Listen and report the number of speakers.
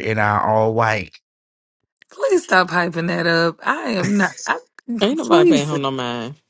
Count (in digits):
3